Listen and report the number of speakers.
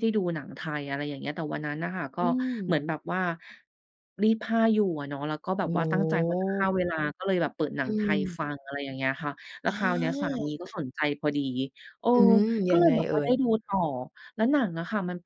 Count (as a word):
two